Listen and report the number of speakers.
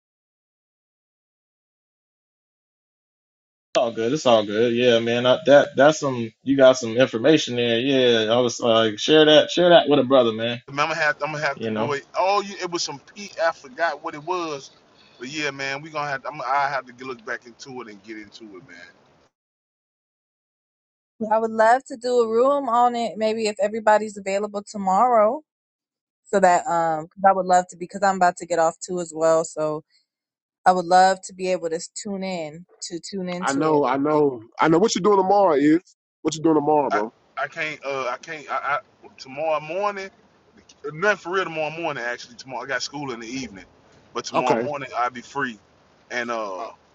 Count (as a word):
four